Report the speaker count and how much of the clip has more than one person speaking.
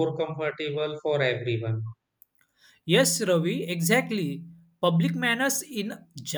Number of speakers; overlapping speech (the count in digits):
2, no overlap